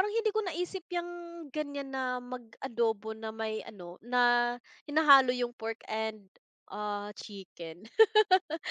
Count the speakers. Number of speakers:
1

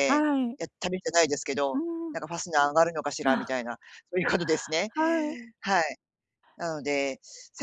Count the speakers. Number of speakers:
2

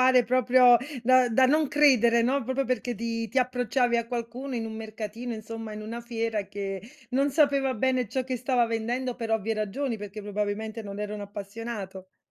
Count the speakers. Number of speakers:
1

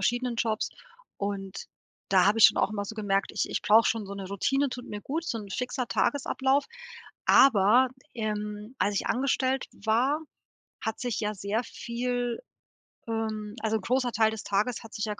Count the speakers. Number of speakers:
1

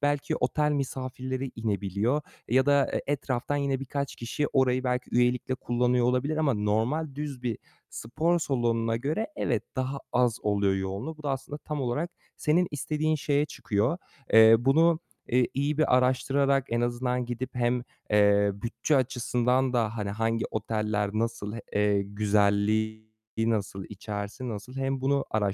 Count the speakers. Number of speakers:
1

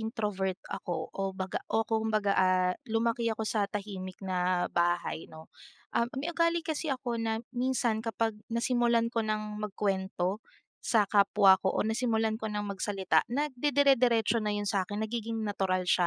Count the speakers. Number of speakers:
1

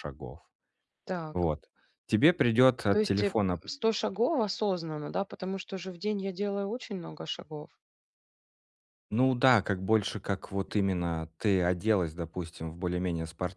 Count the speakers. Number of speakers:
2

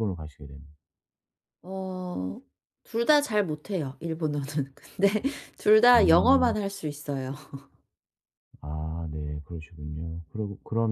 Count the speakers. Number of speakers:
2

